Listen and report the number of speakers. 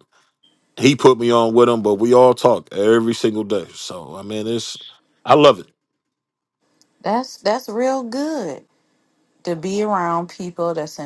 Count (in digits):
2